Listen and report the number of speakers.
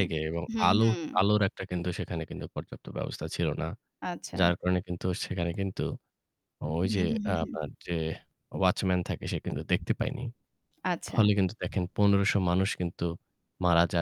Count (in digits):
2